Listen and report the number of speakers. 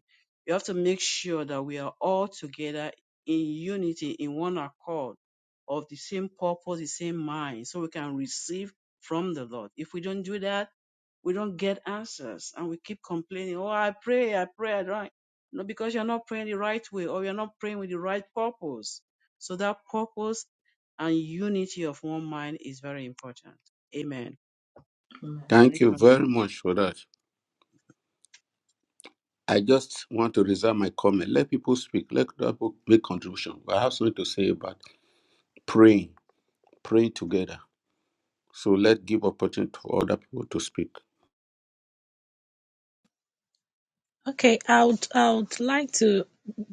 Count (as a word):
three